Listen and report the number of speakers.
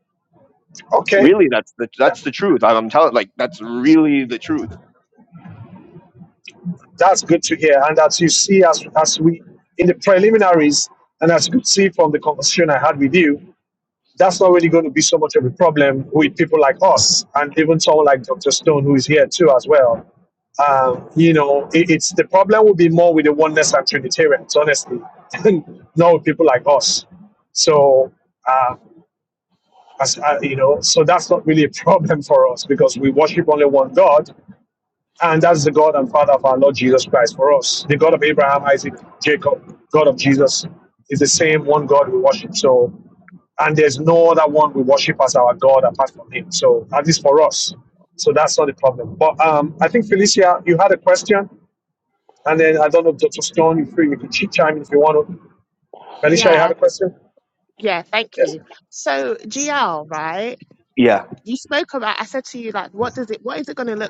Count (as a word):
three